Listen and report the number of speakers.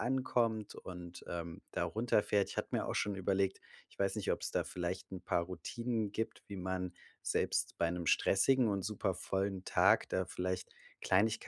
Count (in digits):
1